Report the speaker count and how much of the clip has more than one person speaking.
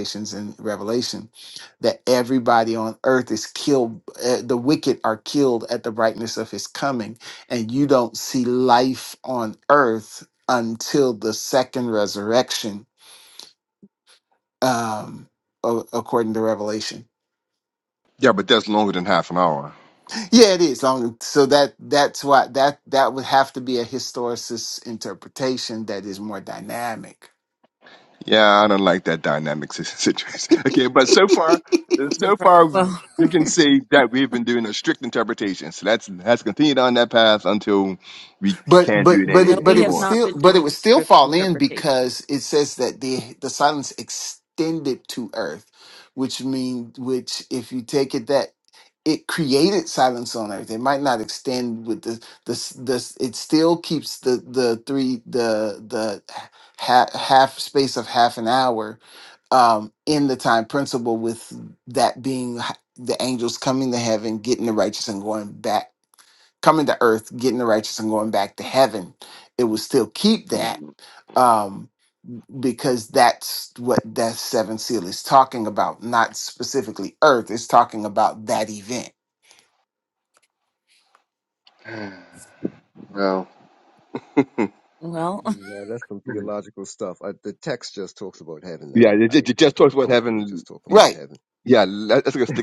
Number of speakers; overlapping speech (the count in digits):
4, about 6%